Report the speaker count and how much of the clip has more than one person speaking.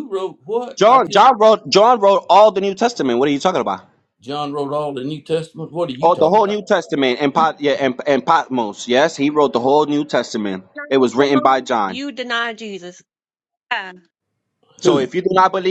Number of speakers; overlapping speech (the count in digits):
3, about 12%